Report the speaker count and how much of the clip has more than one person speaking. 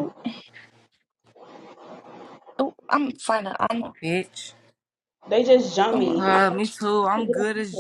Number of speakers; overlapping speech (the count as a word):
three, about 20%